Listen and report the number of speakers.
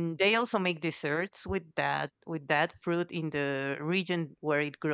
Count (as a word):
one